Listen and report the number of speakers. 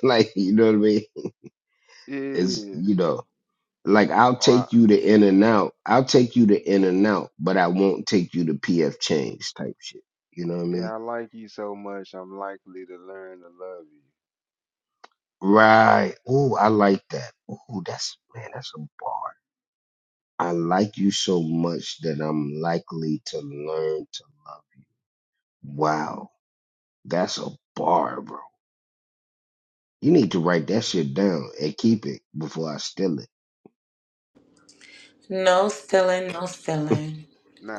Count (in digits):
3